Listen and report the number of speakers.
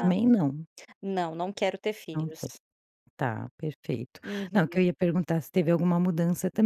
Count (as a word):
two